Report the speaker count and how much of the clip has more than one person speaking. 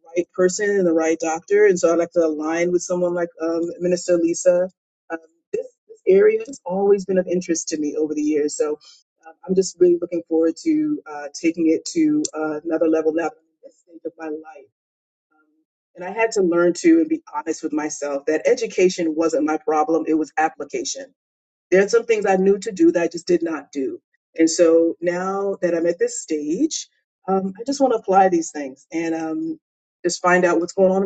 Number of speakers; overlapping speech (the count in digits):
1, no overlap